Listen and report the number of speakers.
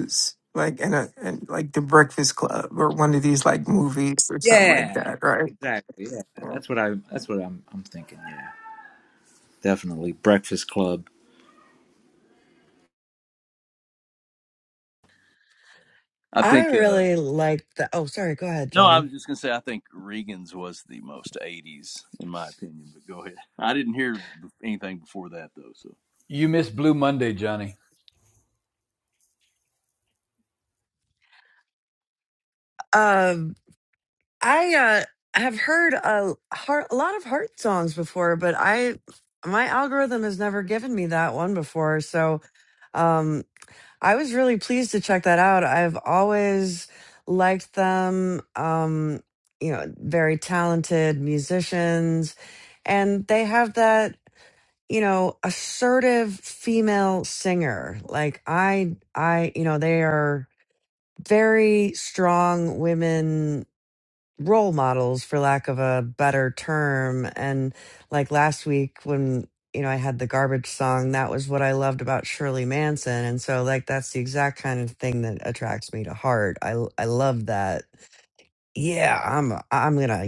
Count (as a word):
five